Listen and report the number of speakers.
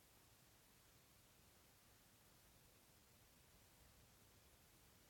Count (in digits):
0